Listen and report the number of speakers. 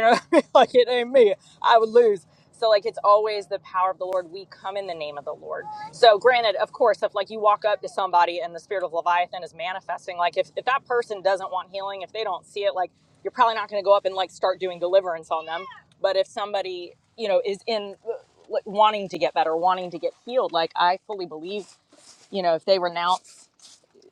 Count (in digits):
1